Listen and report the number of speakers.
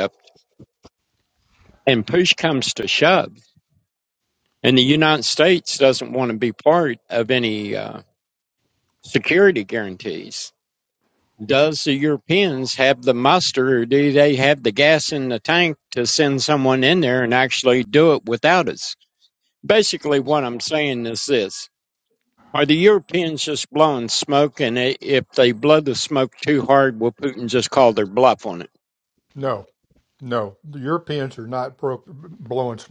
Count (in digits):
2